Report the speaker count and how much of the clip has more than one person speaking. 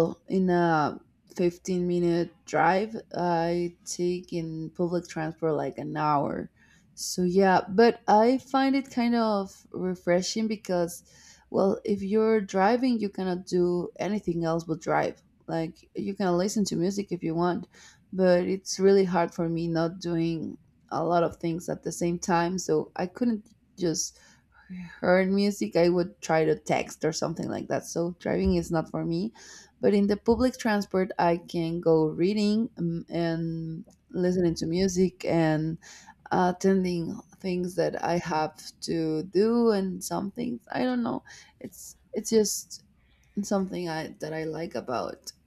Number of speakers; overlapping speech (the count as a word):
one, no overlap